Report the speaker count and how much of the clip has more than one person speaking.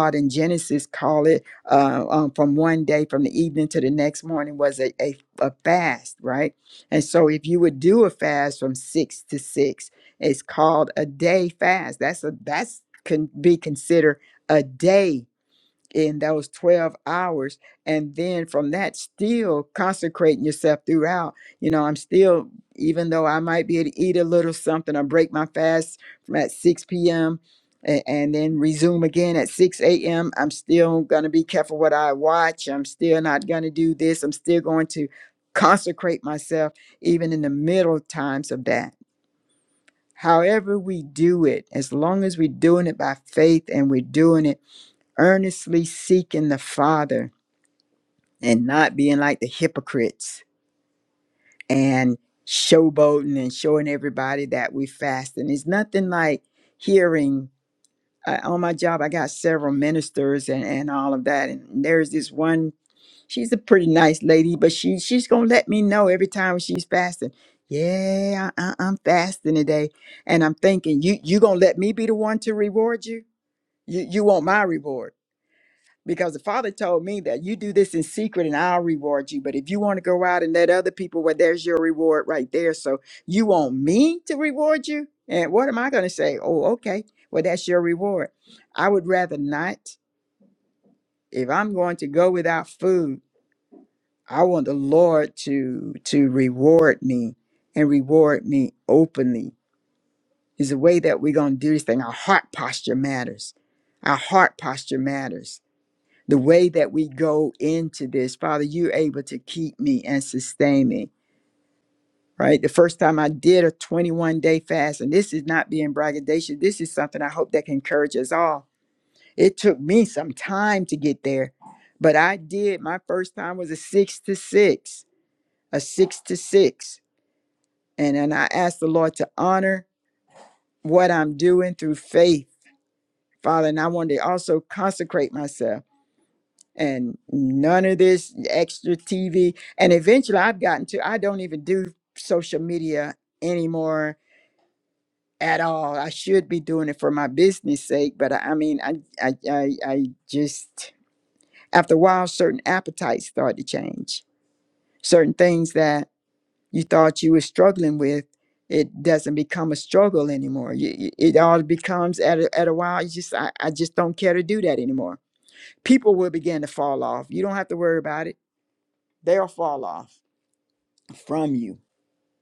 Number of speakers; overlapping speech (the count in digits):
1, no overlap